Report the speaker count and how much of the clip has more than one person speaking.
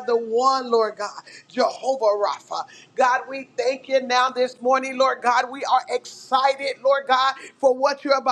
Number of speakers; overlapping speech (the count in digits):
1, no overlap